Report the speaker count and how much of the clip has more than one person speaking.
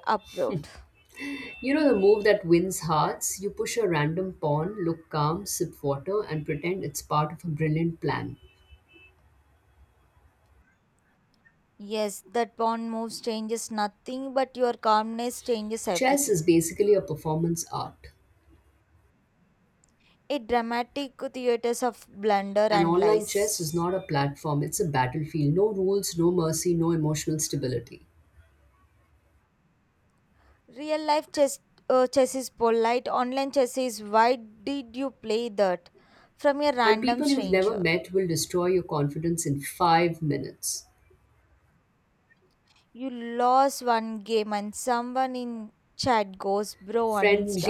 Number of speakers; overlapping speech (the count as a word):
two, about 5%